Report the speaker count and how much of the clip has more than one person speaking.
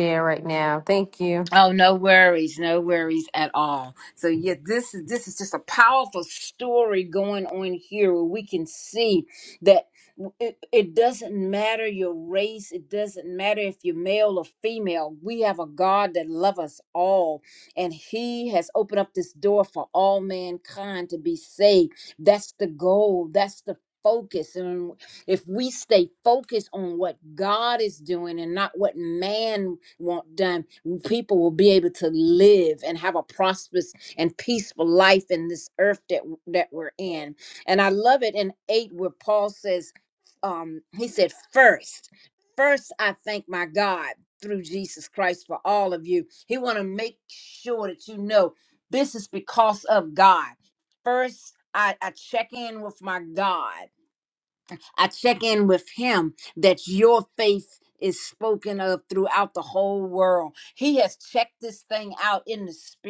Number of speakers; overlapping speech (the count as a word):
two, under 1%